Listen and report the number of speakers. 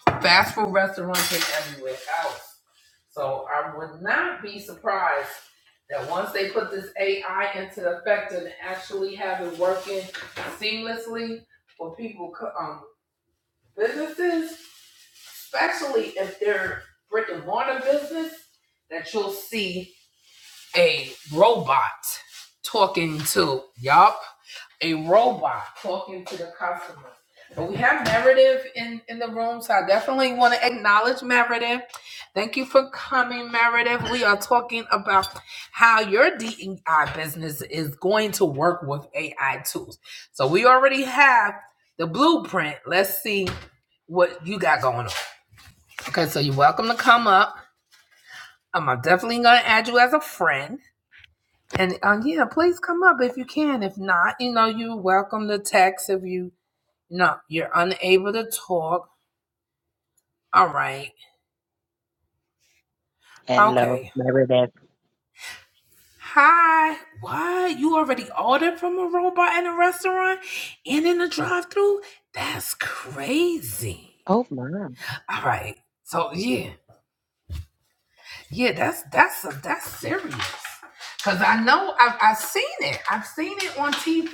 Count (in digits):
2